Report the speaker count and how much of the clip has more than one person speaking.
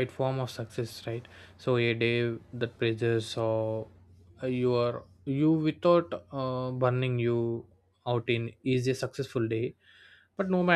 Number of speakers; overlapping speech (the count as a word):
one, no overlap